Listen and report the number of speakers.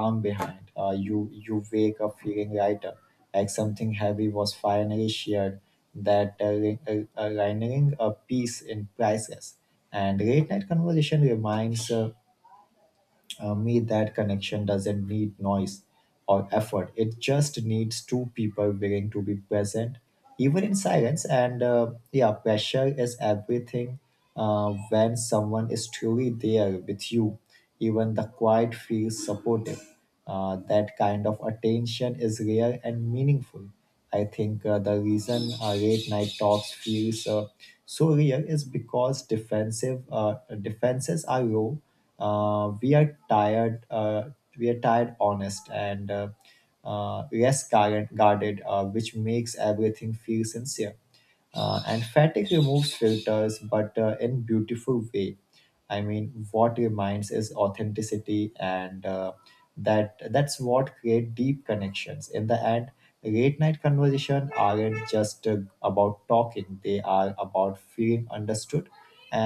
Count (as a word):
one